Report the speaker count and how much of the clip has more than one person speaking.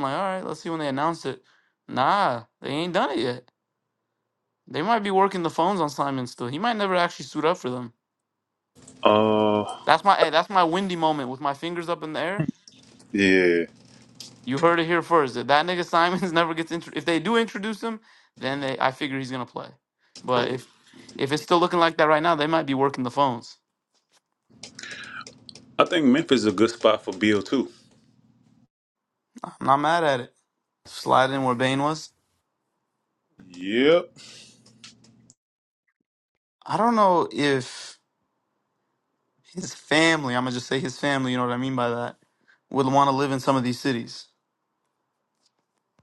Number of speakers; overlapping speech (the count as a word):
two, no overlap